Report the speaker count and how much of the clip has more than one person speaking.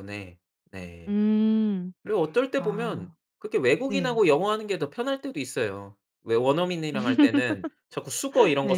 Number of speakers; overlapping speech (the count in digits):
2, about 10%